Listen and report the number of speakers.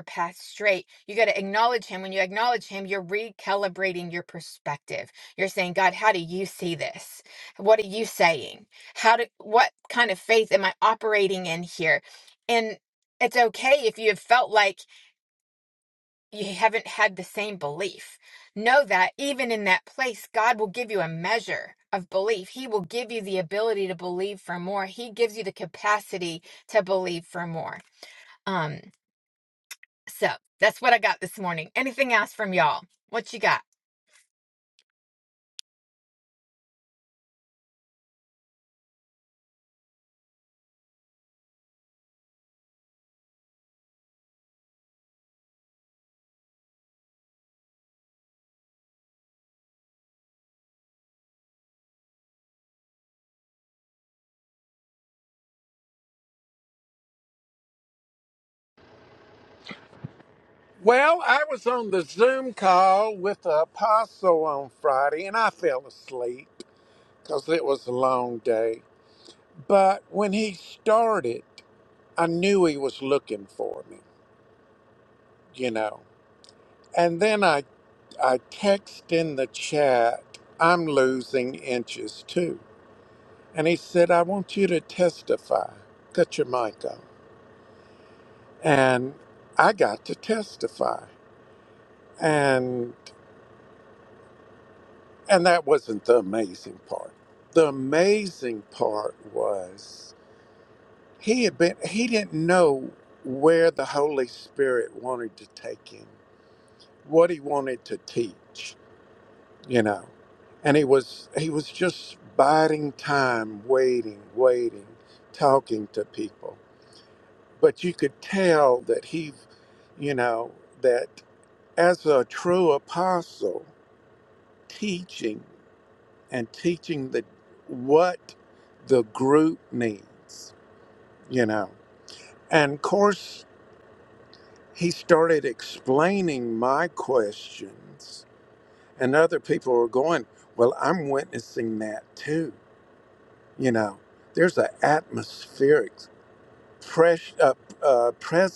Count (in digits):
2